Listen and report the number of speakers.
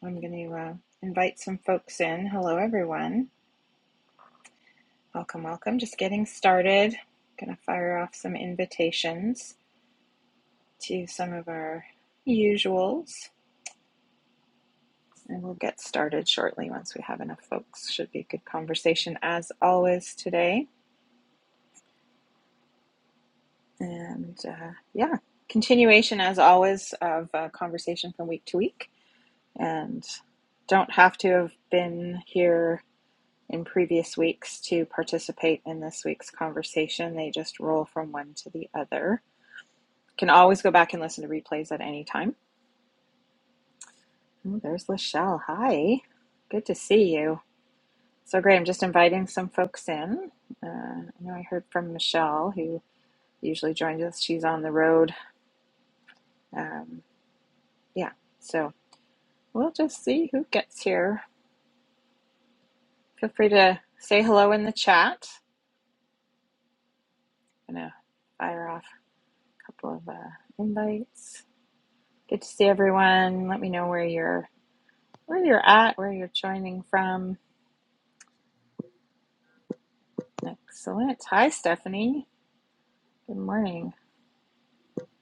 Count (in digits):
1